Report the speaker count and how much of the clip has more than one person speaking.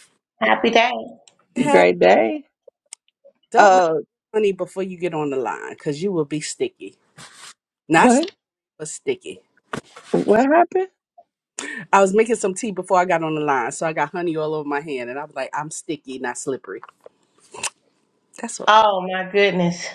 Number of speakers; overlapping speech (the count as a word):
three, about 4%